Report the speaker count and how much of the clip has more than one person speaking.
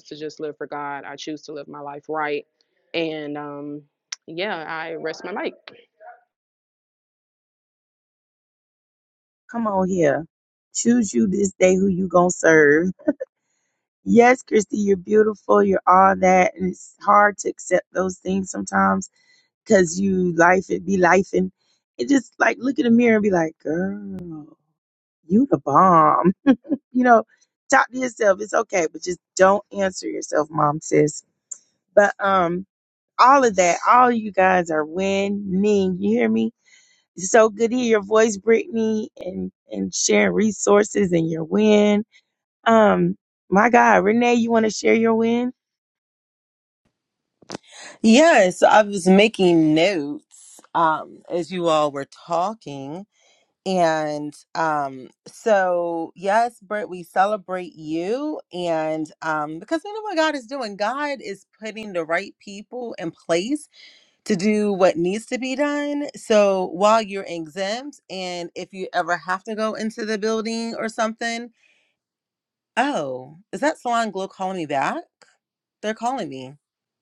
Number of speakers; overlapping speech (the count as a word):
three, no overlap